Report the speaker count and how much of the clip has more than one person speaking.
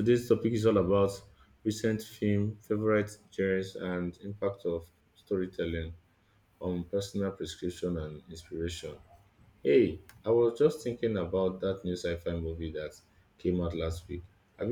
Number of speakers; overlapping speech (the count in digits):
1, no overlap